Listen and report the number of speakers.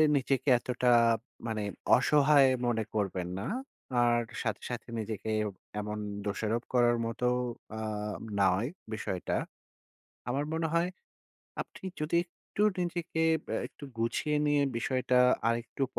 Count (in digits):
1